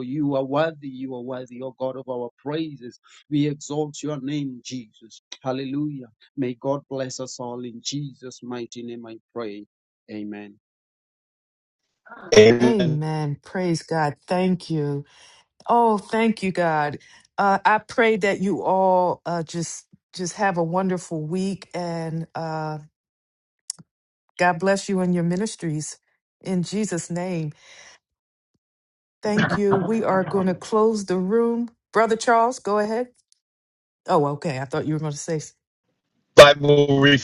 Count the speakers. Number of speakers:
three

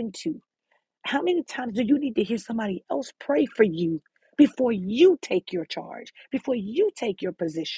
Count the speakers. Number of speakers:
one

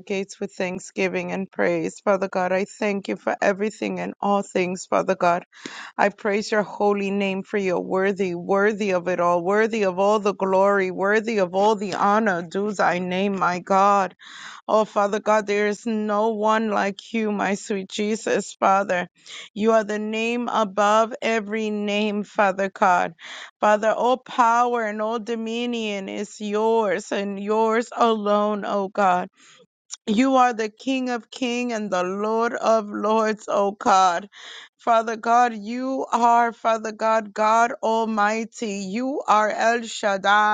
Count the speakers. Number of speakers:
one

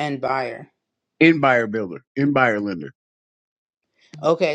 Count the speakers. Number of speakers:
two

